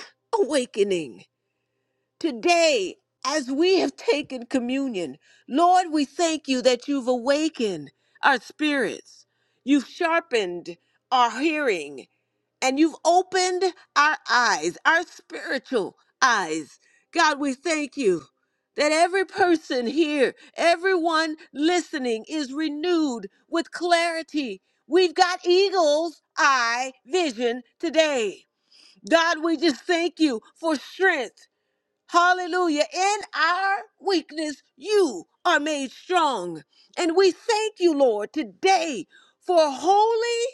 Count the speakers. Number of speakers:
1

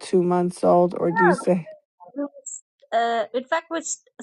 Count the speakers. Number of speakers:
2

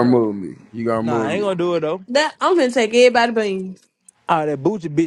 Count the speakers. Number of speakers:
3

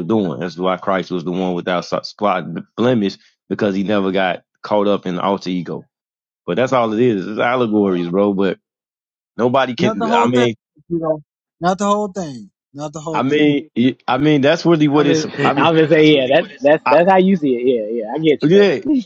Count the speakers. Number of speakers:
3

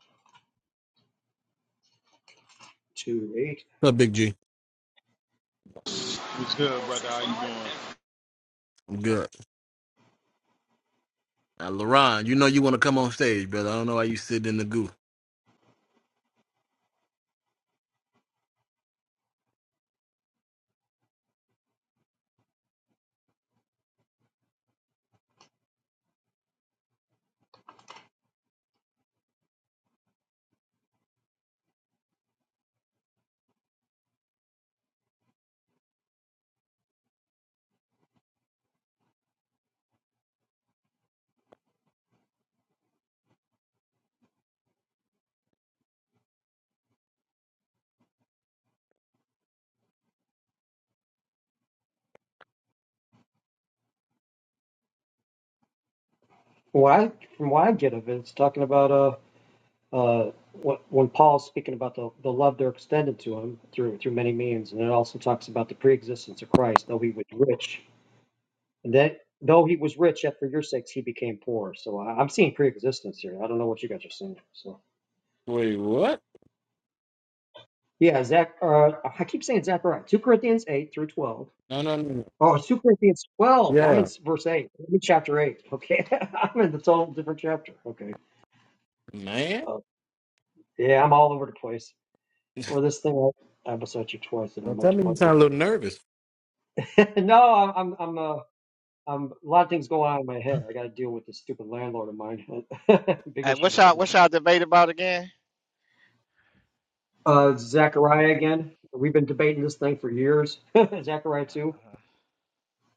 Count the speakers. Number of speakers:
4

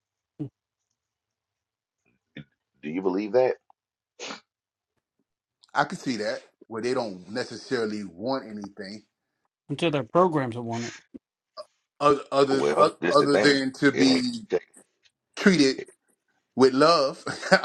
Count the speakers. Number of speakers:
3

